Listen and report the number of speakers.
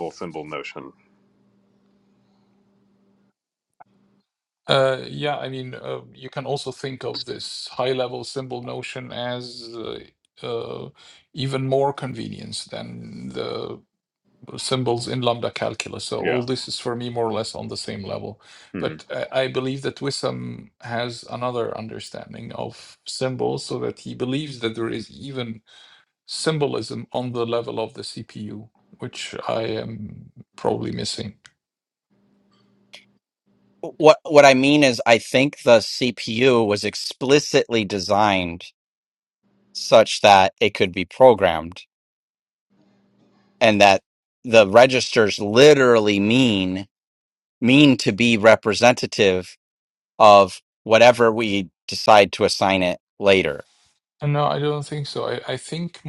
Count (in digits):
3